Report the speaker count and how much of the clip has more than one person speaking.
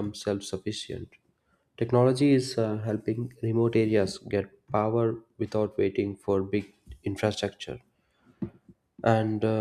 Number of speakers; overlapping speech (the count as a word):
one, no overlap